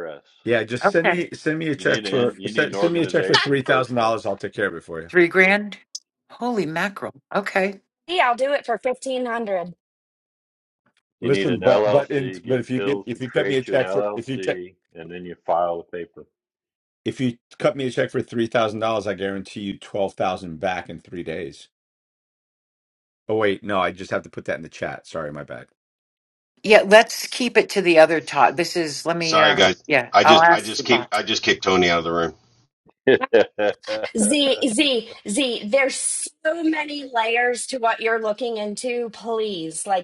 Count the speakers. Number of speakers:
five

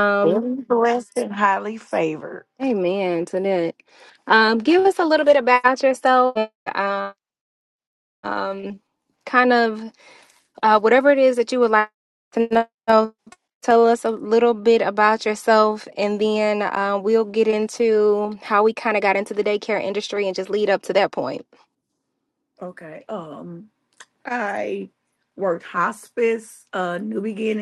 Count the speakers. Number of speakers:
two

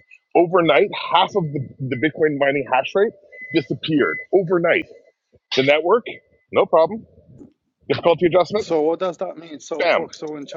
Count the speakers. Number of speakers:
two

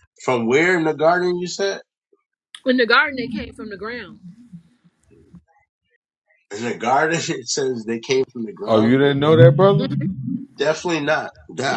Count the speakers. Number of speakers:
three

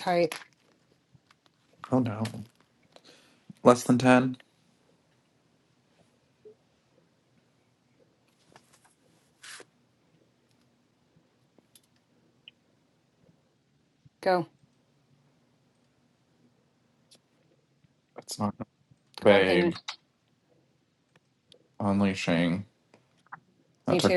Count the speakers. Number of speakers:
two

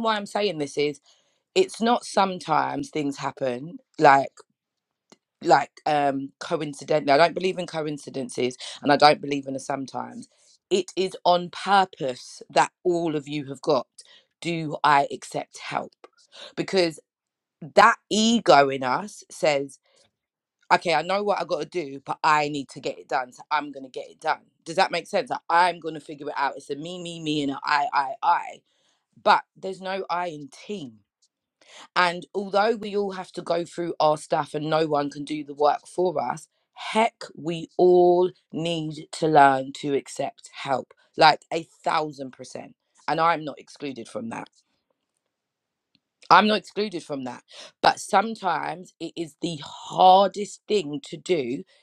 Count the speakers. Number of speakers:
one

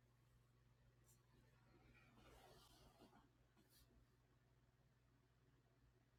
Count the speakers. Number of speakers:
zero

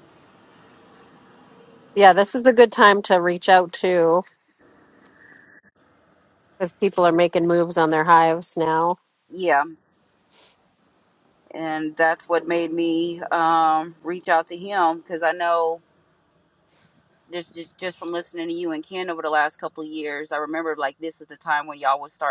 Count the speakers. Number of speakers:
two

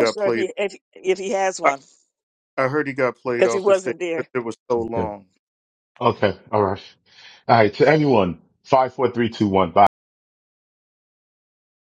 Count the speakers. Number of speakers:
three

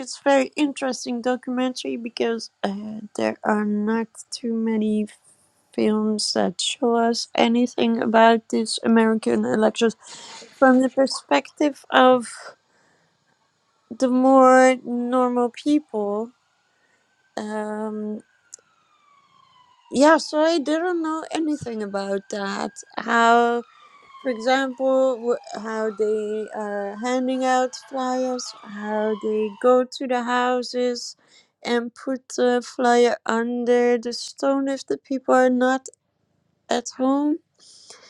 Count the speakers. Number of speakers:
one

